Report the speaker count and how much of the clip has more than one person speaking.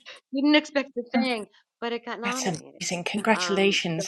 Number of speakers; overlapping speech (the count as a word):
two, about 32%